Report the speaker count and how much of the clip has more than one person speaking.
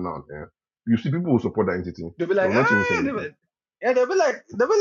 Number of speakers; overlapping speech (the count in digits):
2, about 17%